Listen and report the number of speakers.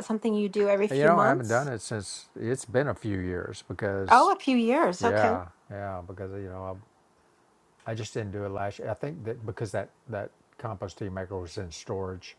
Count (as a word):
two